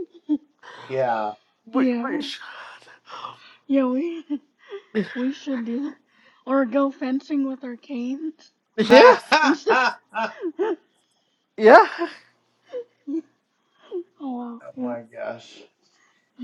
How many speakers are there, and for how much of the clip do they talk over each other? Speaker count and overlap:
3, about 5%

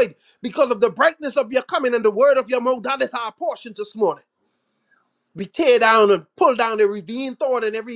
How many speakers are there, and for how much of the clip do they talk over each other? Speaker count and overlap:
1, no overlap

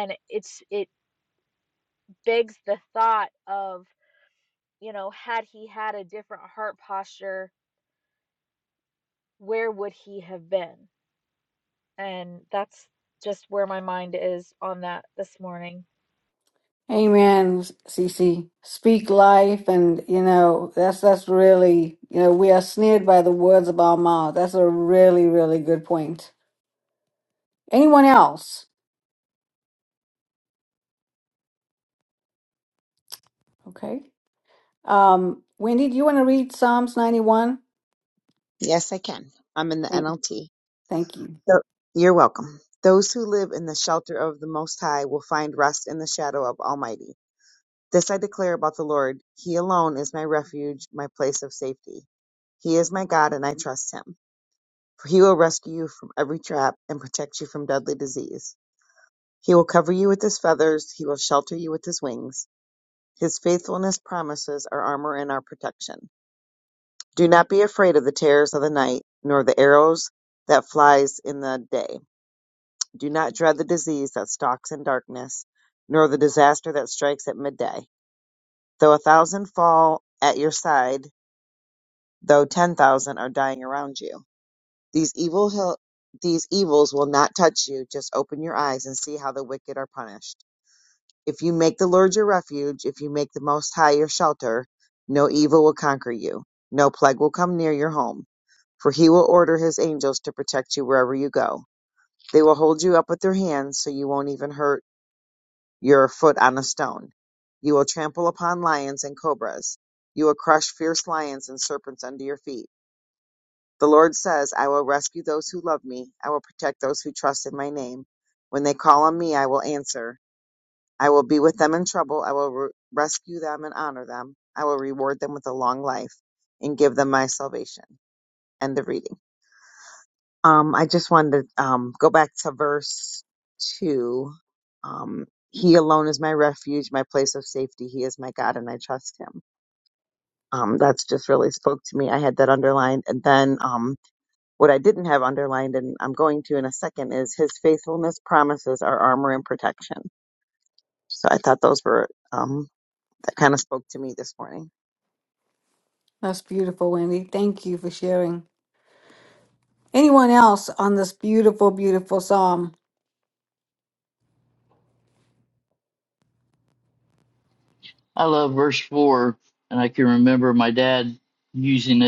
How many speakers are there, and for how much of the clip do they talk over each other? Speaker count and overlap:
4, under 1%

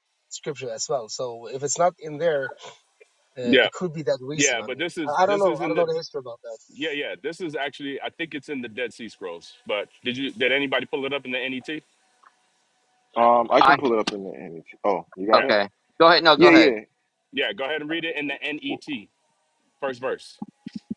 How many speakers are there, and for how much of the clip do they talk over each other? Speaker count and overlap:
4, about 12%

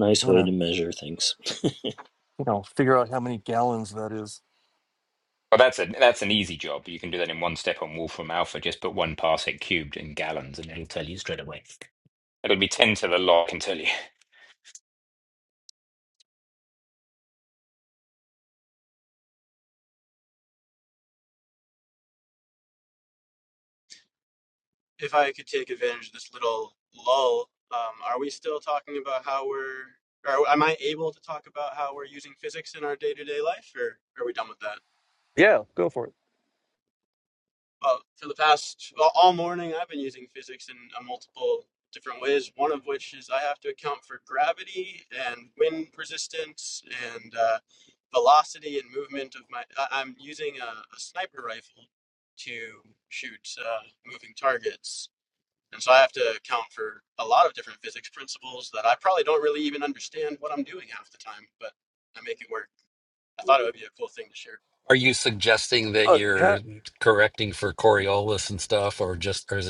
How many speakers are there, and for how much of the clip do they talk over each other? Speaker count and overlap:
5, about 1%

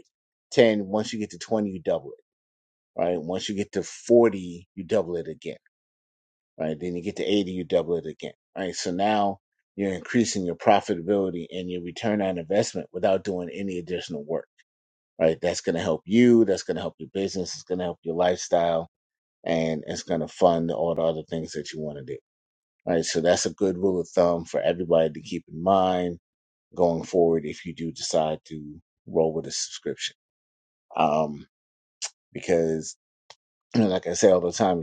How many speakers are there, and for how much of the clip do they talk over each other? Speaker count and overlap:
1, no overlap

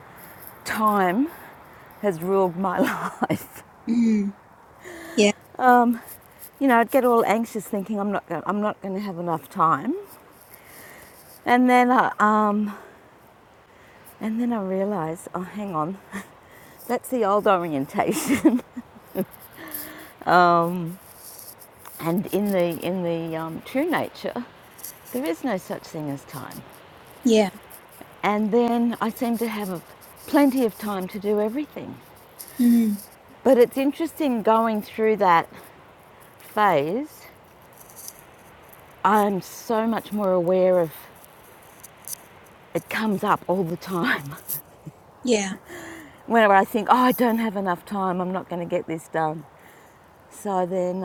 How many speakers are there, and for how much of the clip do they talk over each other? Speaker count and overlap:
2, no overlap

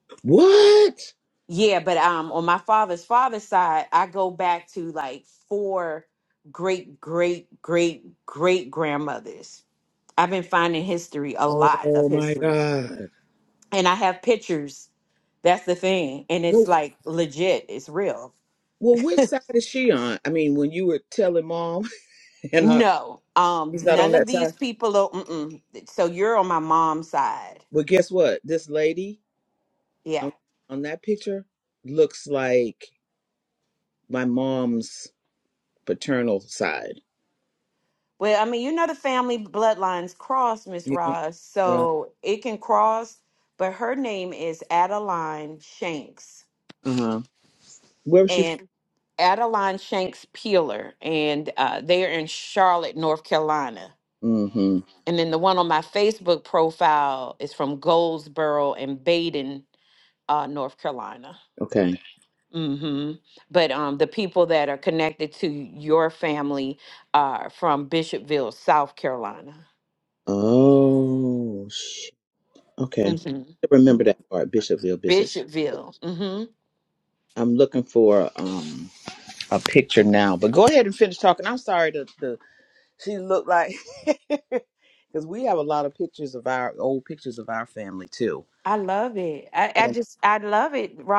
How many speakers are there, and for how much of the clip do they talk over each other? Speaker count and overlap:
2, about 4%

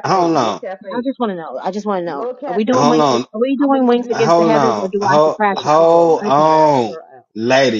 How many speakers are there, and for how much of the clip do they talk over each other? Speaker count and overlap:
3, about 68%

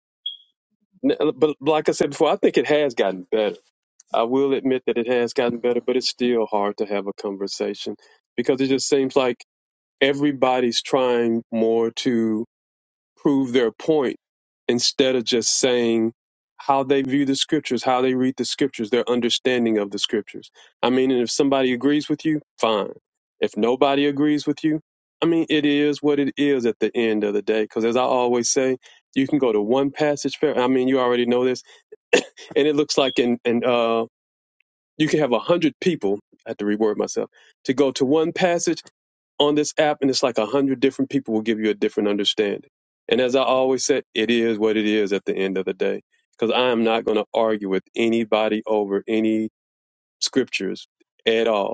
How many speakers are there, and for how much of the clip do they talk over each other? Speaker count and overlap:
1, no overlap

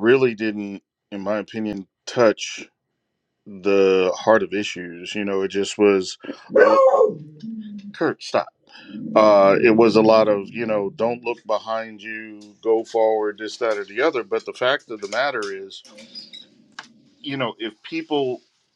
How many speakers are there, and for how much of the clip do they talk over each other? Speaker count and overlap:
1, no overlap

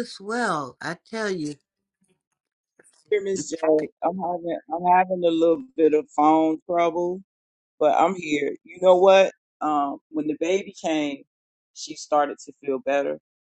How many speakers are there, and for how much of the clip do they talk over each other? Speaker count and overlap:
2, no overlap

